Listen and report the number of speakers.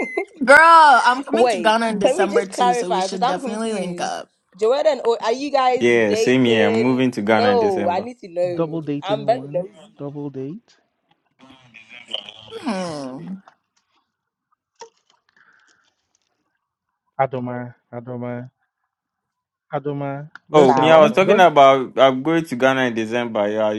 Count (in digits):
4